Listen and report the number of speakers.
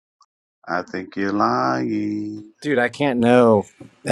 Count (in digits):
2